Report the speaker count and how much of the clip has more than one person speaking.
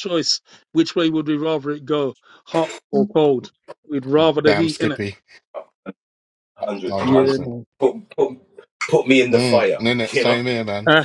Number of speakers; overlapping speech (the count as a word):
three, about 21%